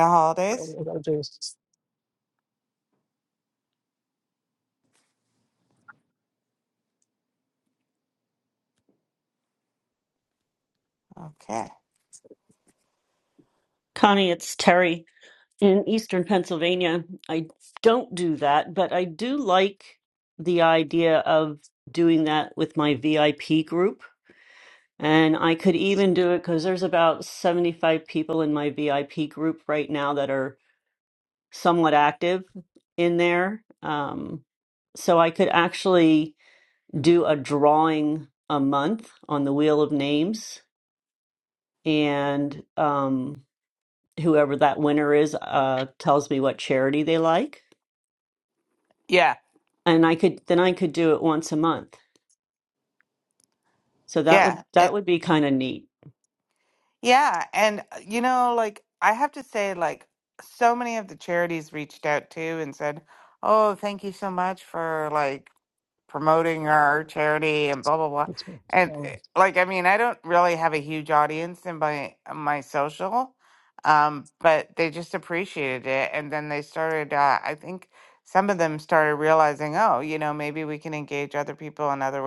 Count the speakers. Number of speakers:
3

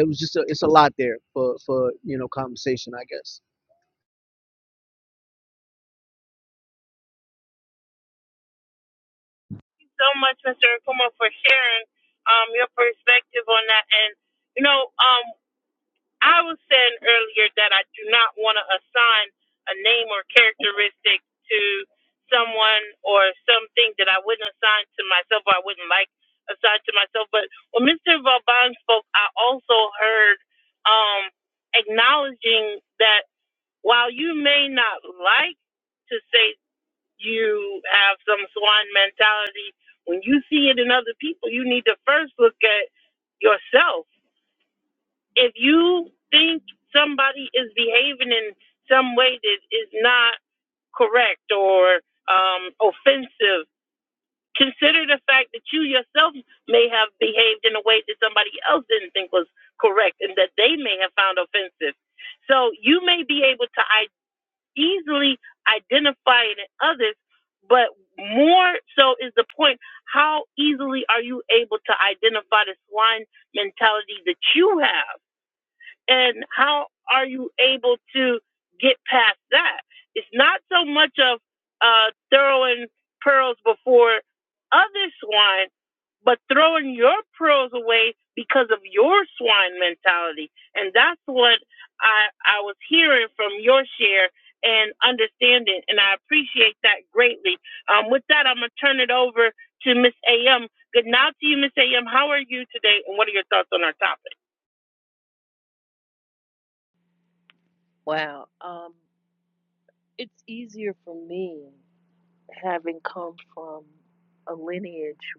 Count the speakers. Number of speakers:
3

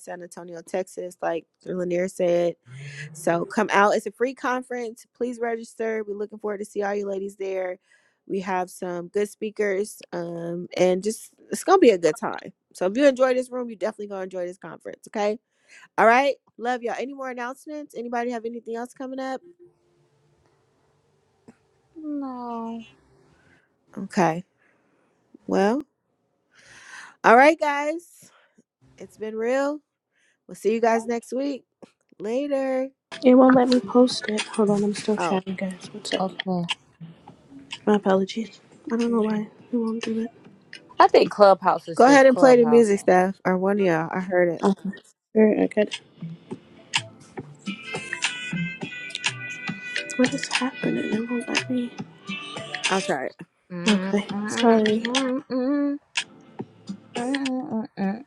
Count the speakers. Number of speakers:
3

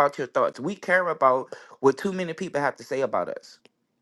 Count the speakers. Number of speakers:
1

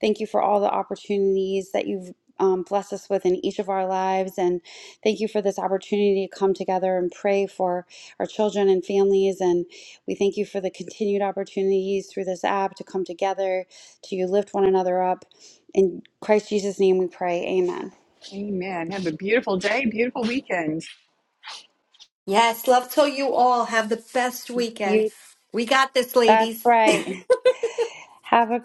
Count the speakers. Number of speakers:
3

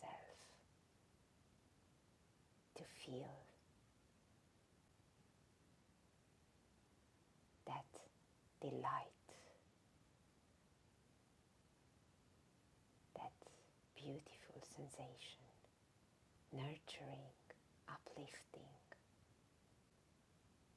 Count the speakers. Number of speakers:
1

